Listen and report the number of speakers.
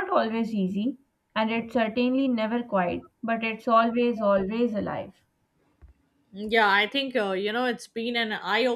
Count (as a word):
two